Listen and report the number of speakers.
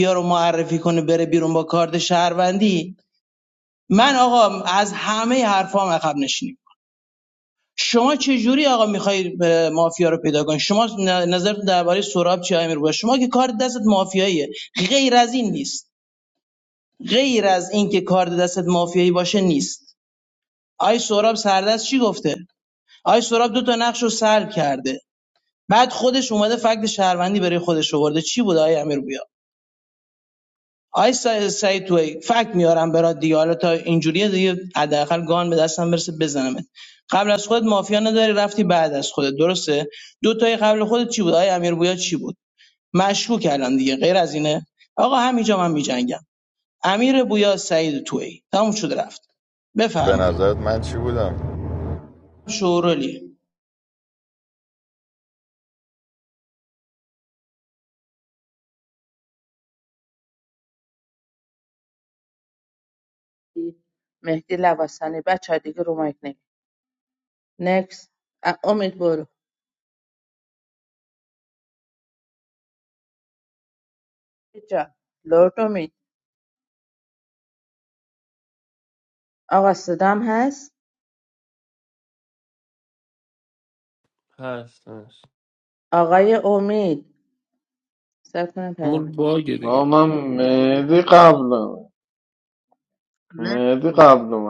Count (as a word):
five